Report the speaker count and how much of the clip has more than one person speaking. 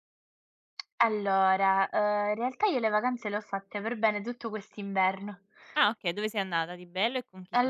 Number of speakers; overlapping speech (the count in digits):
2, about 2%